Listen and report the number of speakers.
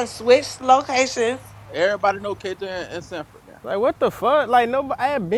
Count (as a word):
three